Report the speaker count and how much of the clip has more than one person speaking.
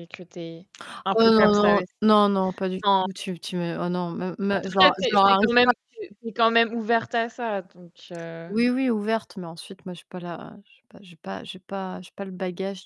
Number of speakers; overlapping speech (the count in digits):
2, about 15%